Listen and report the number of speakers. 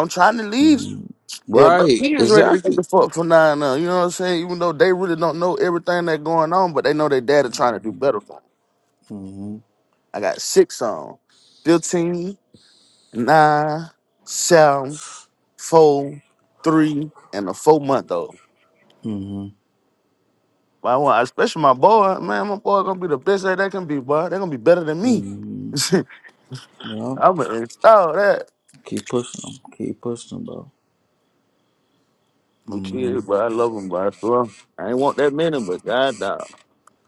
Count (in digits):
2